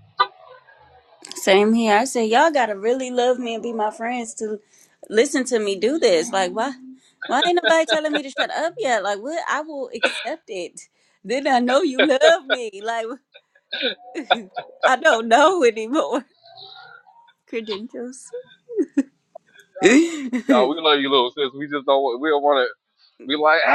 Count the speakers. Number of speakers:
two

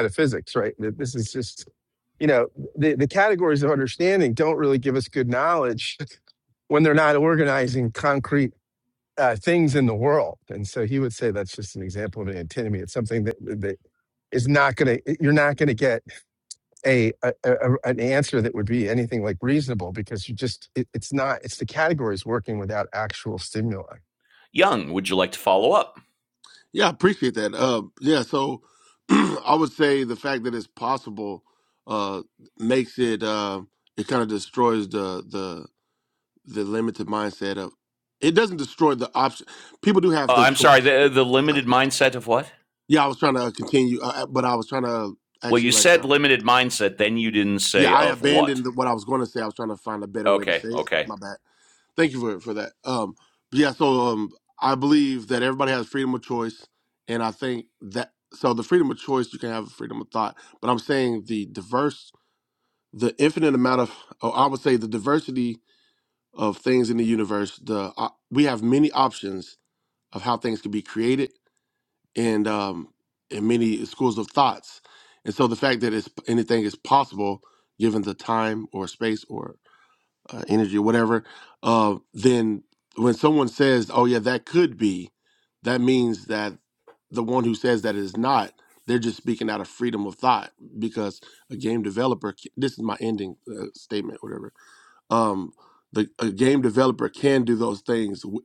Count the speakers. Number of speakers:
three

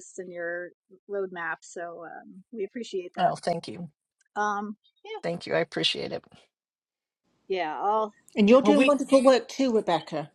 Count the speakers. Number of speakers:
three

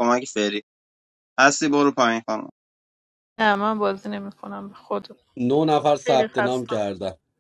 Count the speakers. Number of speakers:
three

